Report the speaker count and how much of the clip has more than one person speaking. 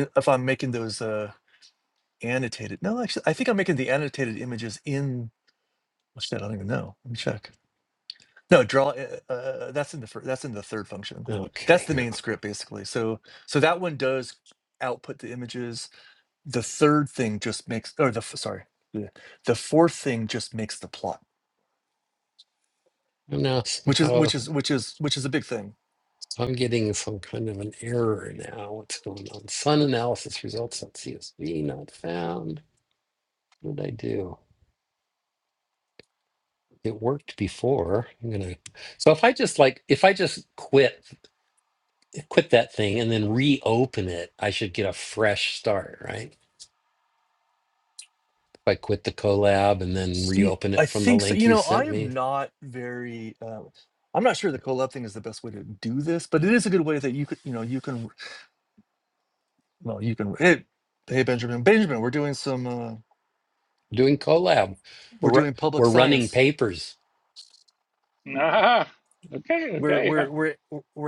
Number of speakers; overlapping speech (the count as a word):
three, about 6%